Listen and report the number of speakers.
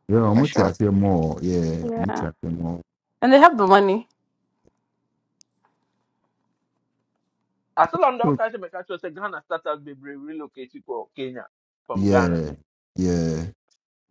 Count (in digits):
3